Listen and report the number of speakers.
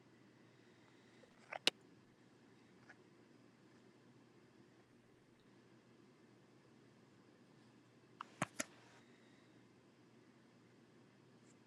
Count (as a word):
zero